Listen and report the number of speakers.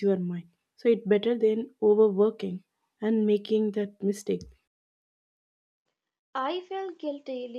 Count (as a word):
two